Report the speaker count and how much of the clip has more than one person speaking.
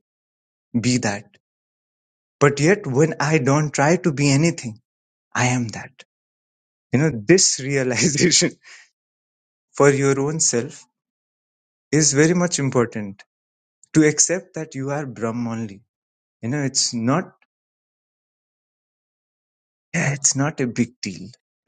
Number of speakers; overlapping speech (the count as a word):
one, no overlap